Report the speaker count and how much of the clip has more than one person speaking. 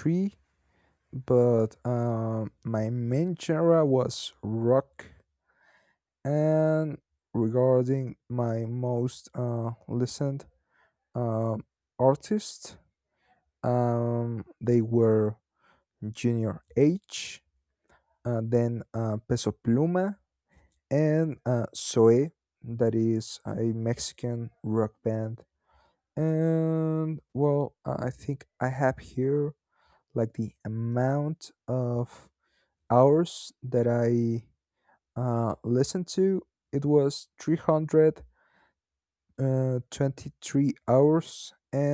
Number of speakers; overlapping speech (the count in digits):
1, no overlap